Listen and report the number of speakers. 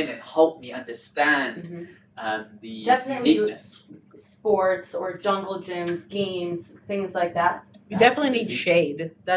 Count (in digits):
3